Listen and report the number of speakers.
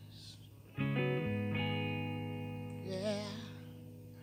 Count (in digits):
0